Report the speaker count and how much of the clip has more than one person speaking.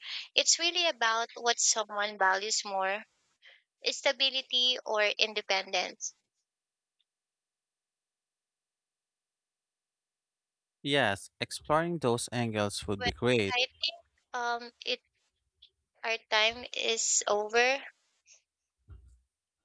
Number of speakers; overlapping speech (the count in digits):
2, about 1%